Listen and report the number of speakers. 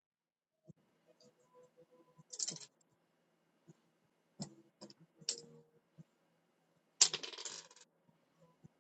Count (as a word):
zero